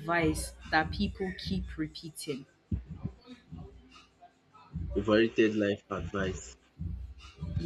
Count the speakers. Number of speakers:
2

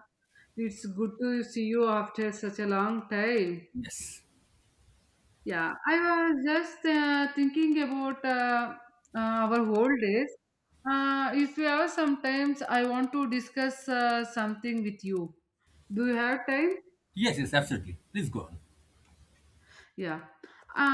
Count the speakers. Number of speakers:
2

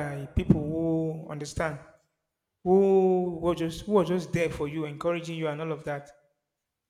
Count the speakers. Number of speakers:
1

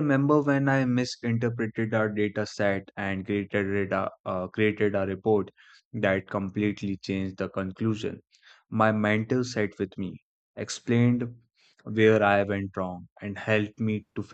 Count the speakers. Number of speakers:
1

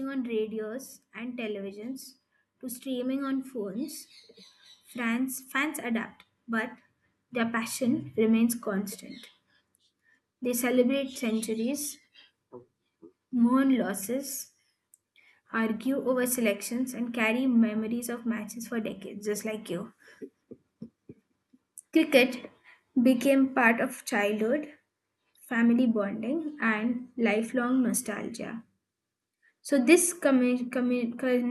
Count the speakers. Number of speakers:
1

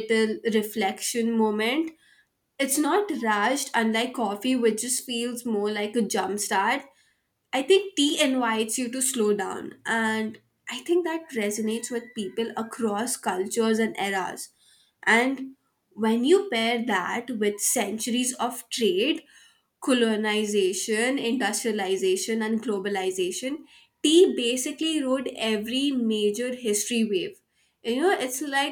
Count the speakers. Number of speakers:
1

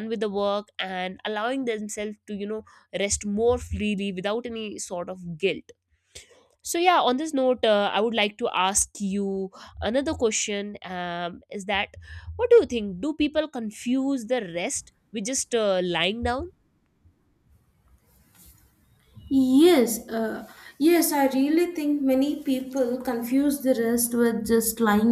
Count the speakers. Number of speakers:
2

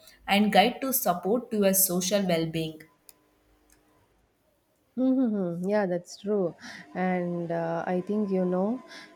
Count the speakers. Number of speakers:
2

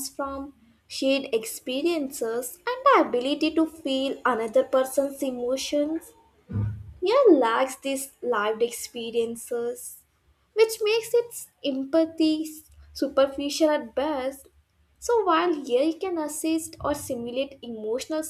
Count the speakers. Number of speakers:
1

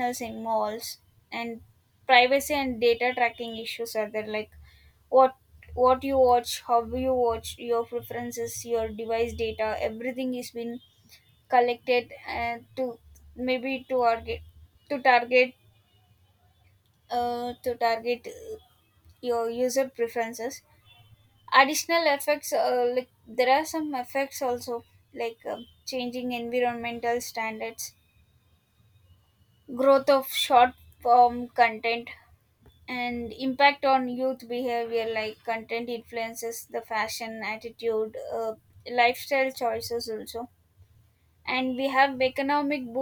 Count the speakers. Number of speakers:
1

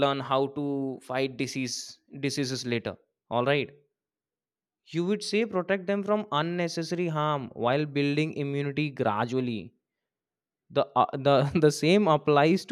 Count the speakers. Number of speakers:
1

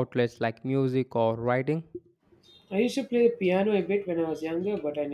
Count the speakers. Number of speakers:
2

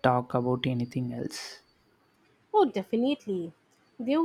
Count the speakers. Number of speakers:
2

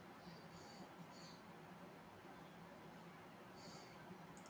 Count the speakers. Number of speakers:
0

